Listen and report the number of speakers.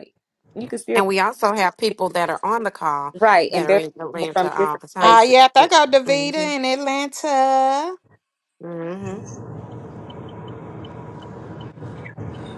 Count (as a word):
three